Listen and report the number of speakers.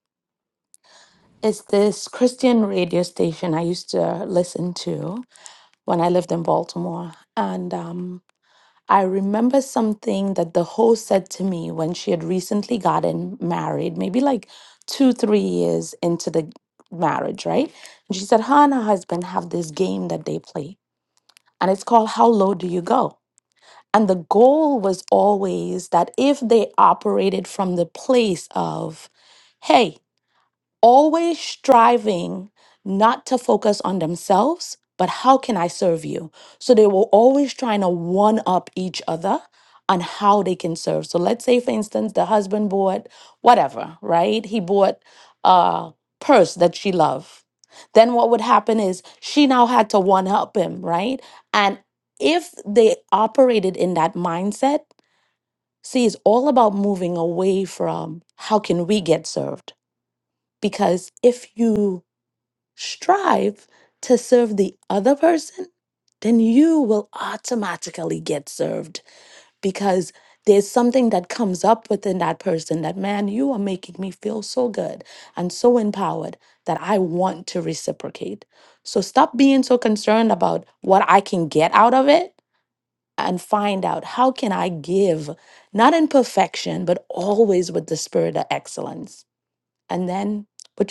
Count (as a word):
one